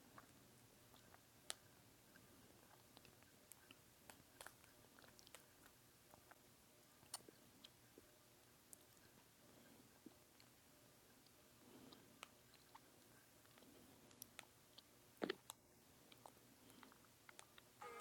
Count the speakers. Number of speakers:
0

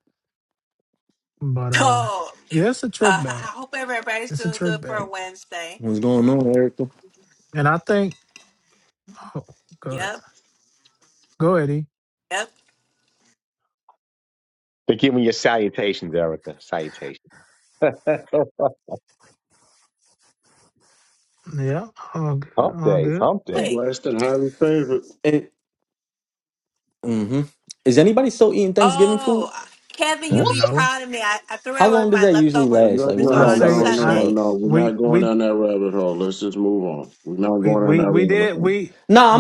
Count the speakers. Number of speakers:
5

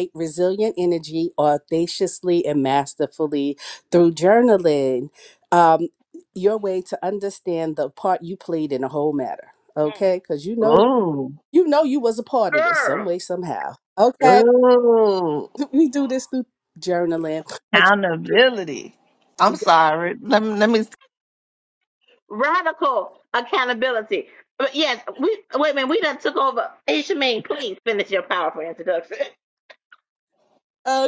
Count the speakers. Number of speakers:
3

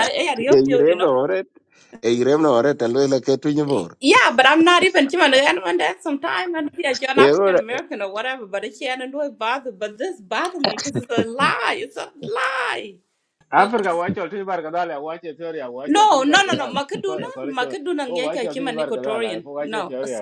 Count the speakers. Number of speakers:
3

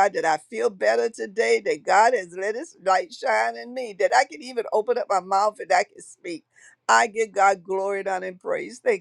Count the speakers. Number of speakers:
1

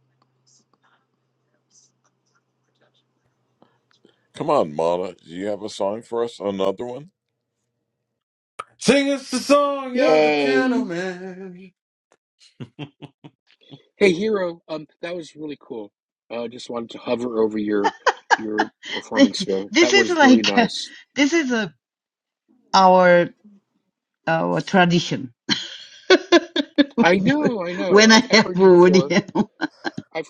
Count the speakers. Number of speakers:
4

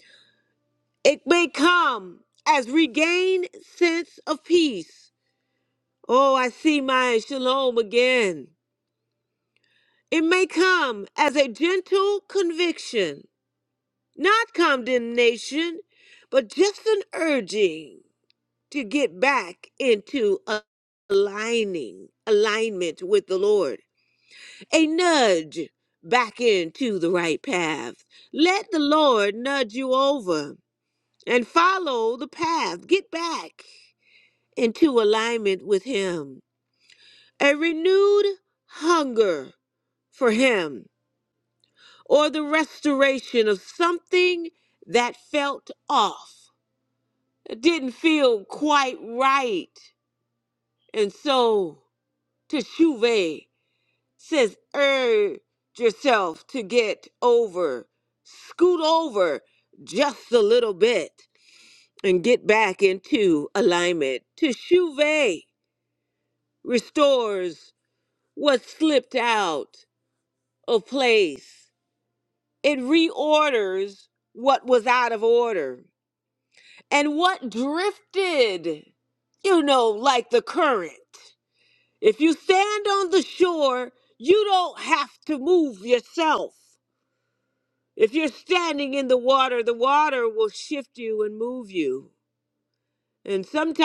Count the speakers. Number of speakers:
1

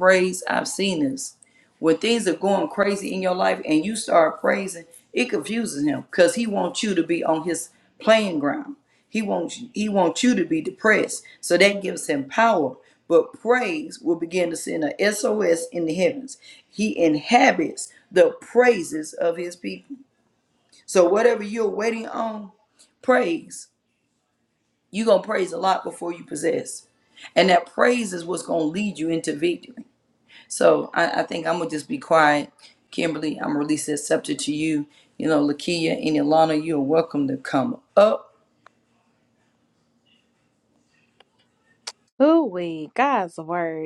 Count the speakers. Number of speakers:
2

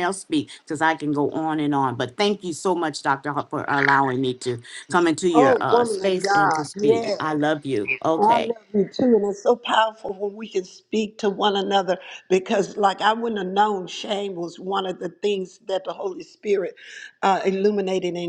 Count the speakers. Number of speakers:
2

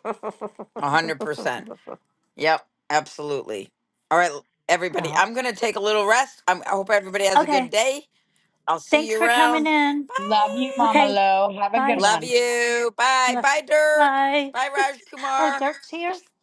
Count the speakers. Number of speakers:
3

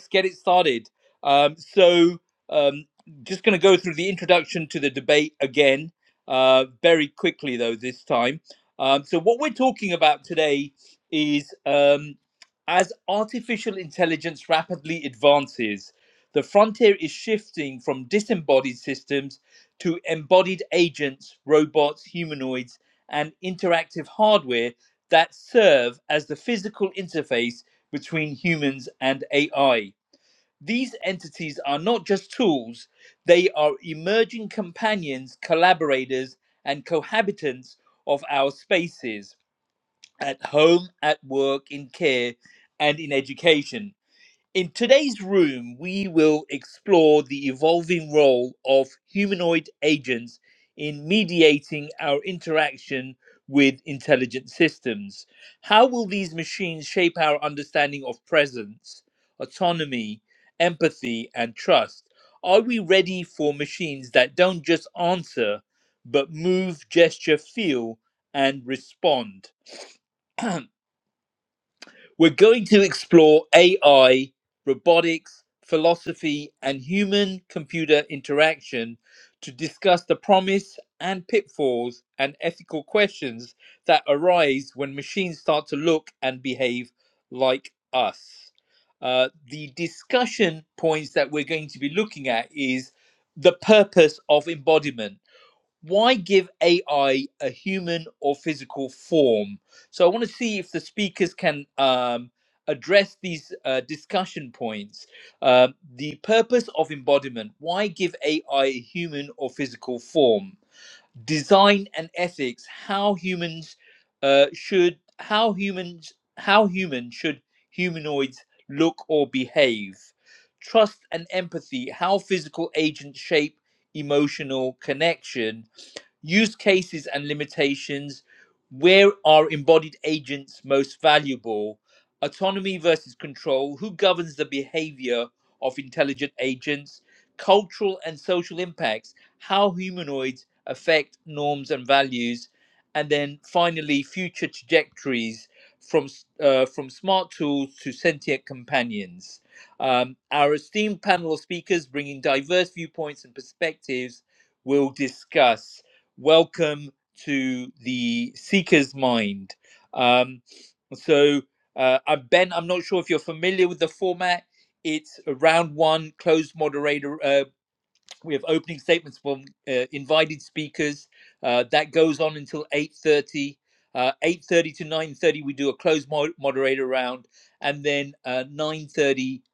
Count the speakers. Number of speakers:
1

